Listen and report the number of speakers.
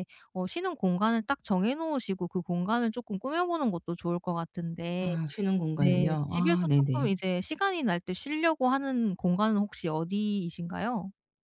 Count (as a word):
two